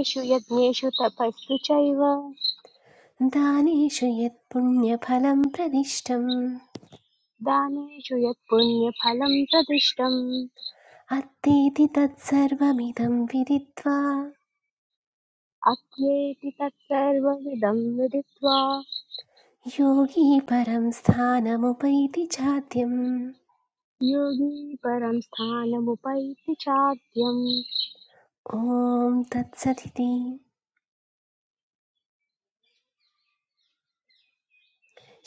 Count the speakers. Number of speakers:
two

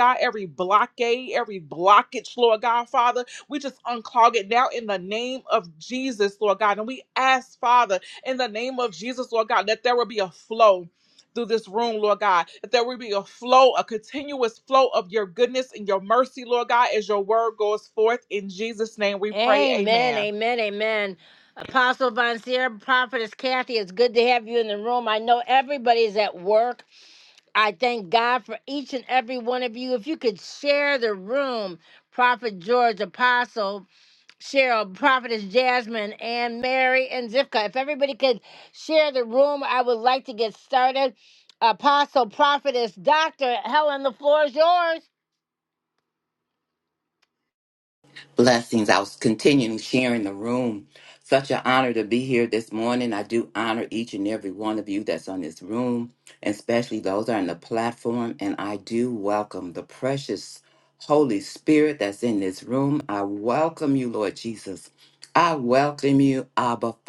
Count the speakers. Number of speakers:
three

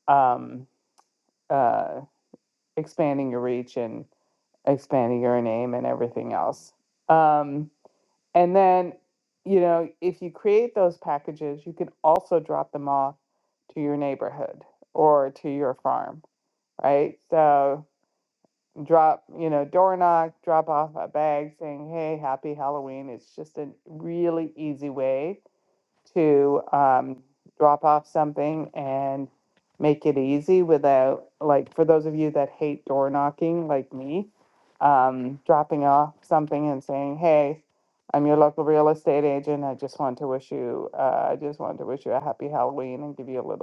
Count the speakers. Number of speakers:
one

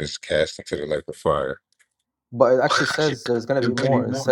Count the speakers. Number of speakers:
two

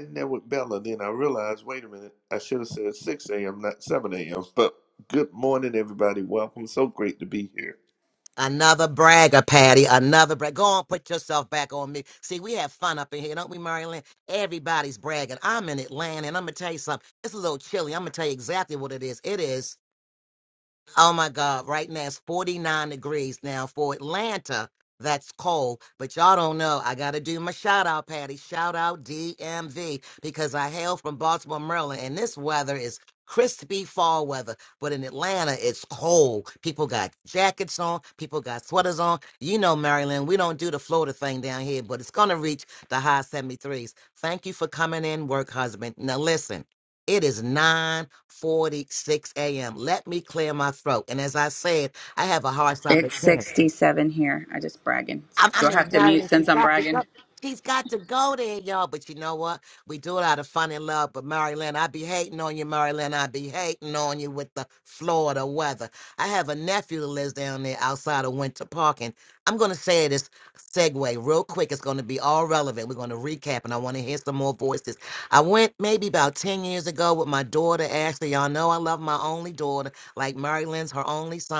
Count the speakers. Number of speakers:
three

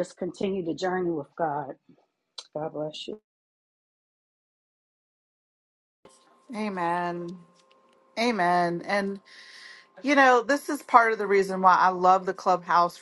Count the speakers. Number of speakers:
two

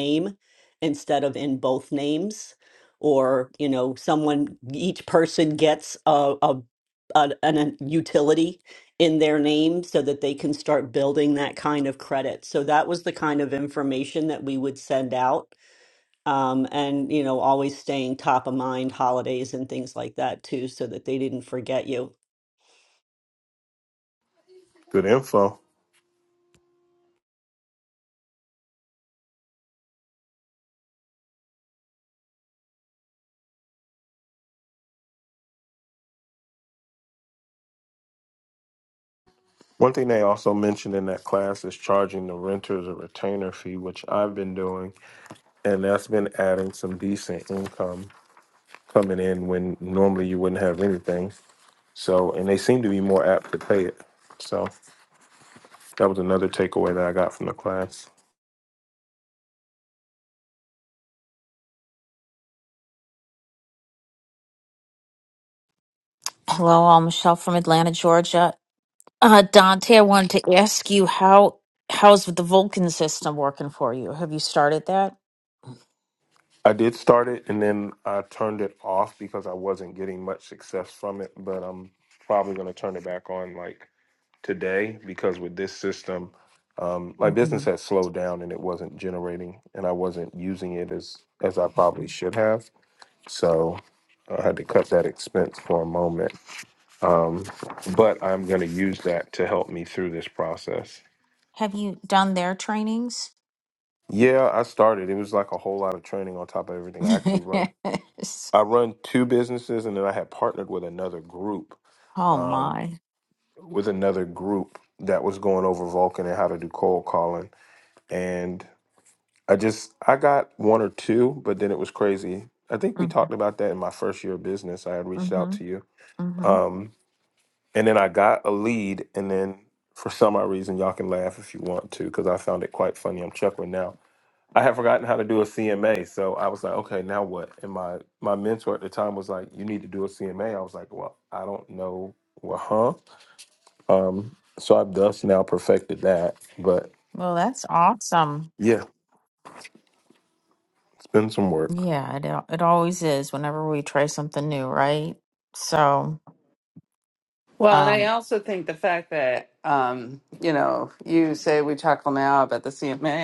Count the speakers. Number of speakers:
four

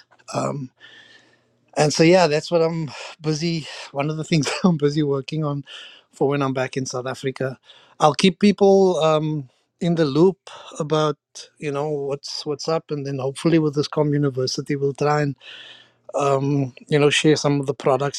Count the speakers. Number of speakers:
one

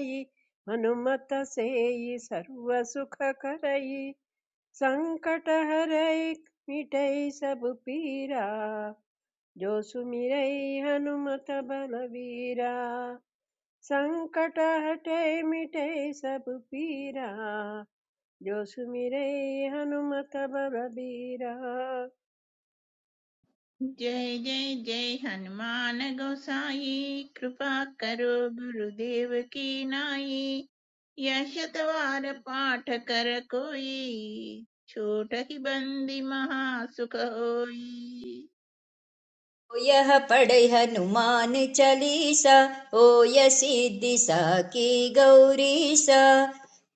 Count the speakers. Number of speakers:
three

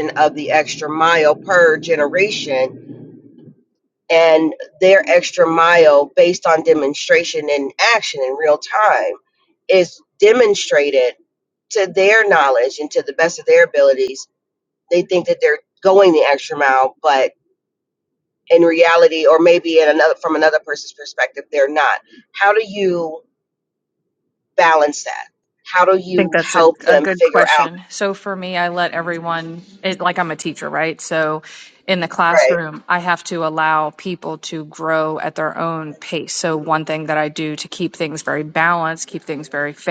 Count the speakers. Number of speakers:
two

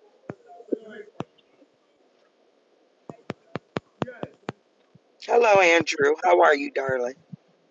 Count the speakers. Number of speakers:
one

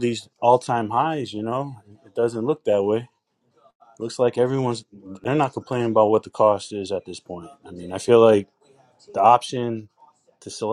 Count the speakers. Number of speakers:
one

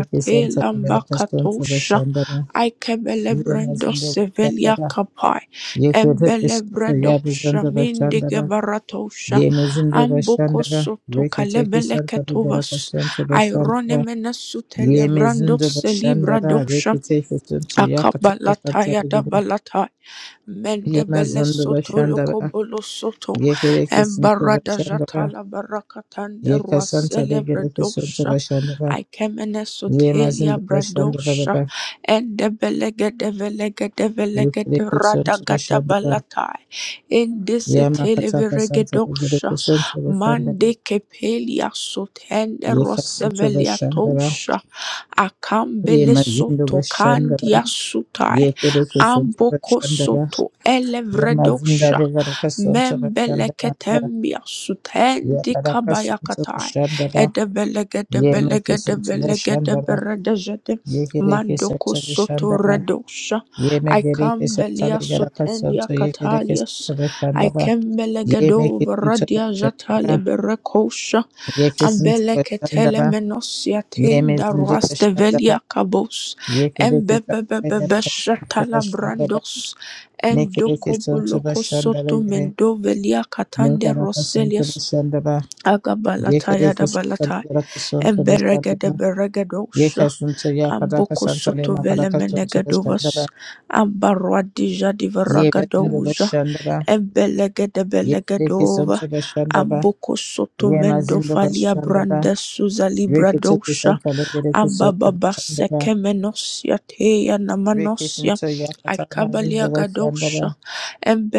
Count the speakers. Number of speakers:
two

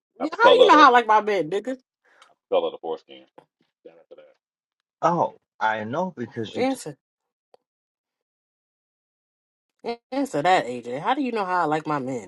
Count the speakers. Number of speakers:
three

